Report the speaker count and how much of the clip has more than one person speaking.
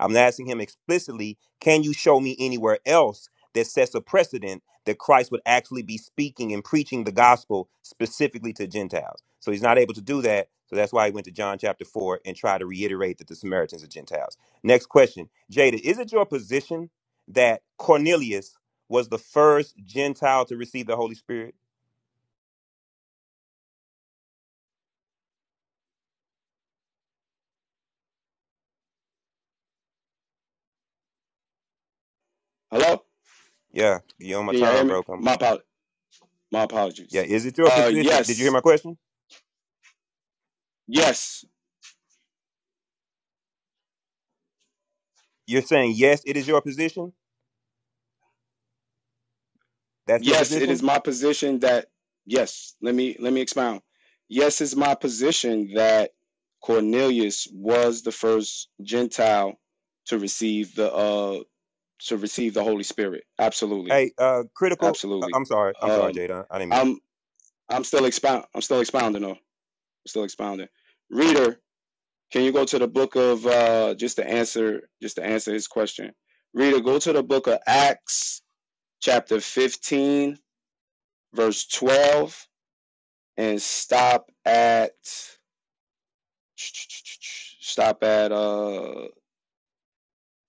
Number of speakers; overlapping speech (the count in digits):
2, about 3%